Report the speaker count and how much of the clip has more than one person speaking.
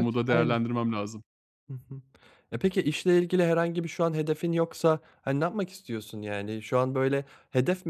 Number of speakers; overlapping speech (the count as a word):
two, about 7%